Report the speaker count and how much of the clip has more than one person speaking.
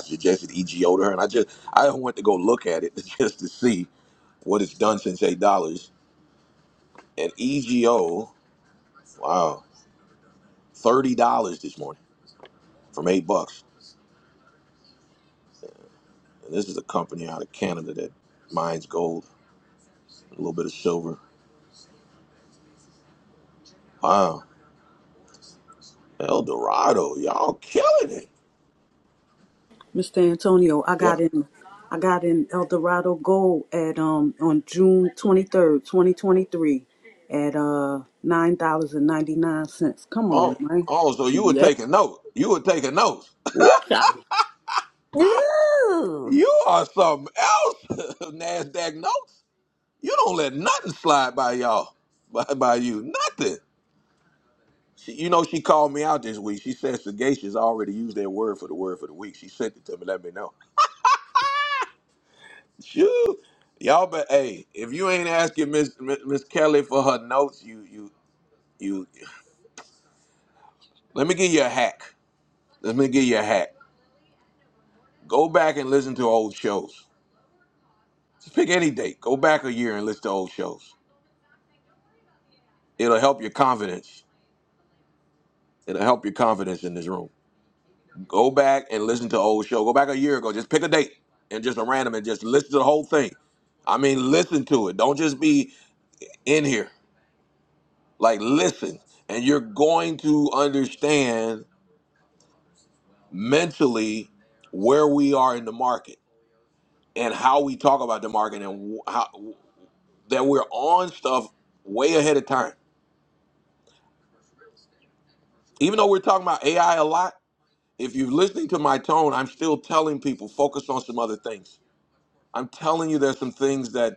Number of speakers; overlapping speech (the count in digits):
3, about 1%